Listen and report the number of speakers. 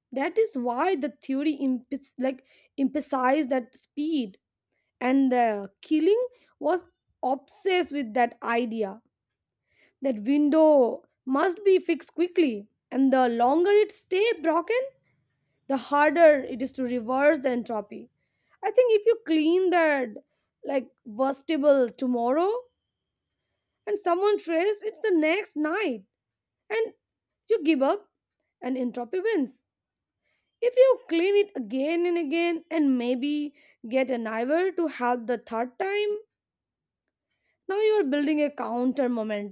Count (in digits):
1